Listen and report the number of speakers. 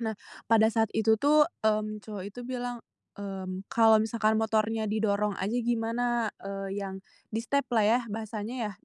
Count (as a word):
one